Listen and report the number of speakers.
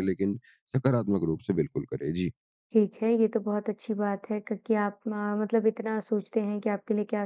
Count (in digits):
2